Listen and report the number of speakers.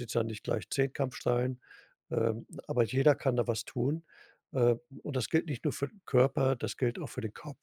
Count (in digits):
1